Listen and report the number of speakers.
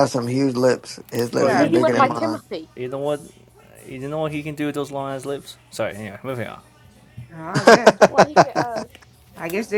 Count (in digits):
4